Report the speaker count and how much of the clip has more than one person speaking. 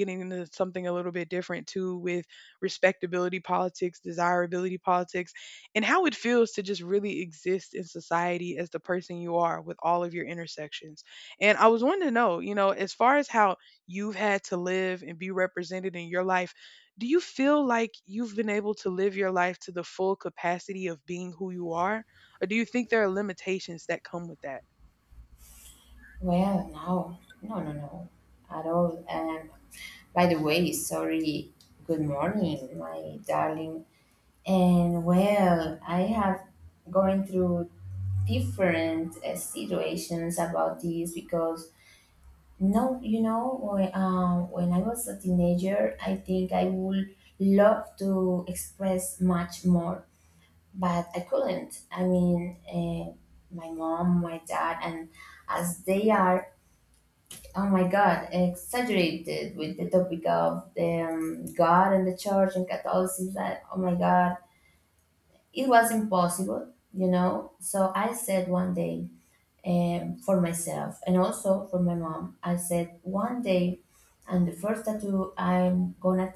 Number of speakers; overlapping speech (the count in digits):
2, no overlap